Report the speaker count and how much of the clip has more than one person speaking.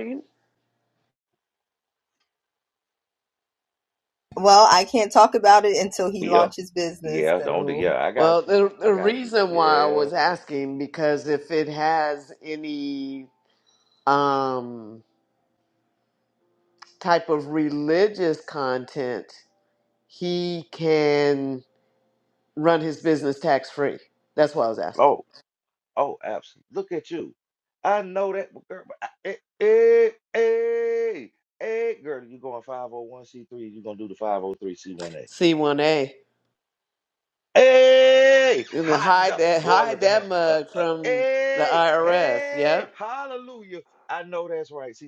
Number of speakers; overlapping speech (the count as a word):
three, about 15%